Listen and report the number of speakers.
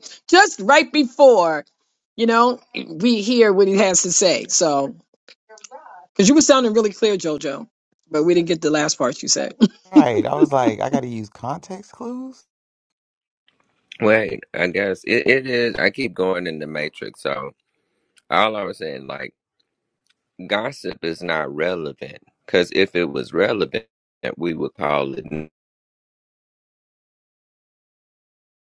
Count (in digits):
3